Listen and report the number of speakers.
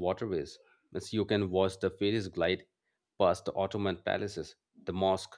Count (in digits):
1